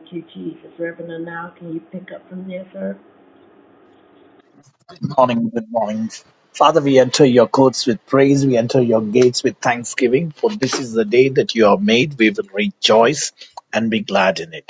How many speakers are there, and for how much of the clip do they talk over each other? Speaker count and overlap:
2, no overlap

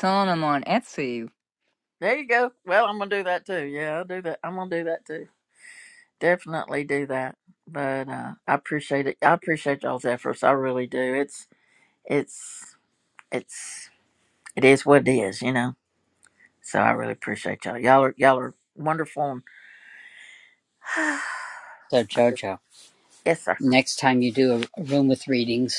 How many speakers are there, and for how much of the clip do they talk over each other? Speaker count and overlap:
3, about 1%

